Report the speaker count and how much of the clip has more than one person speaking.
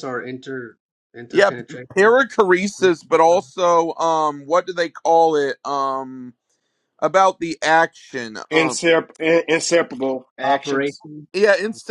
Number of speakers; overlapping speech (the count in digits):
3, about 9%